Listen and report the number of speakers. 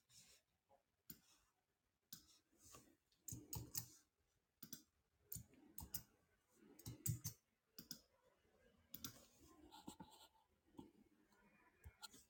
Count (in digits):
0